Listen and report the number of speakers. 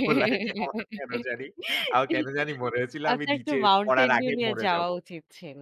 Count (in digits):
2